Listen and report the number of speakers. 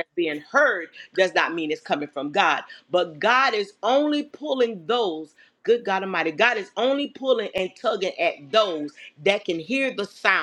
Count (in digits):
1